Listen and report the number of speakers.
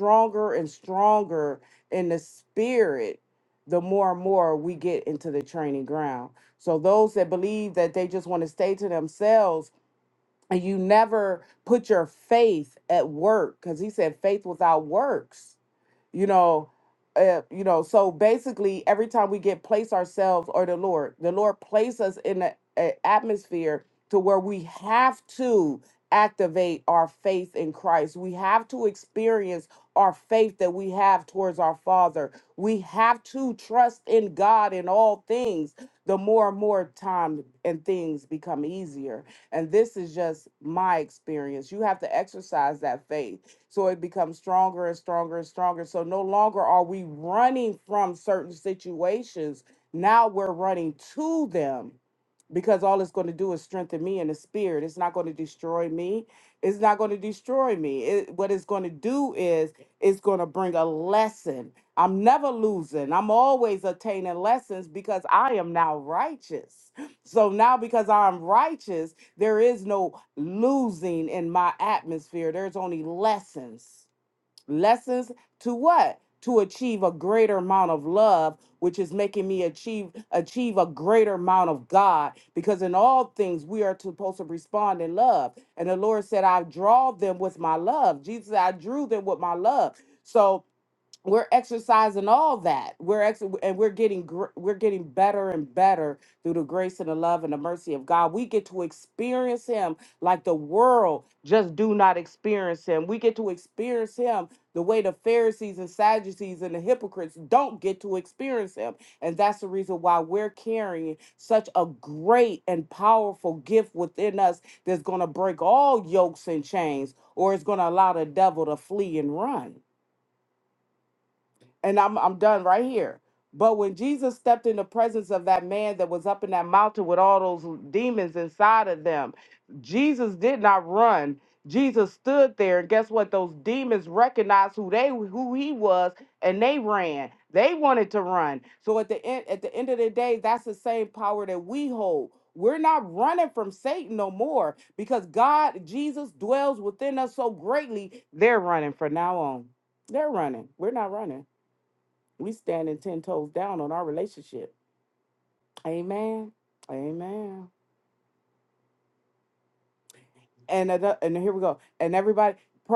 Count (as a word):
one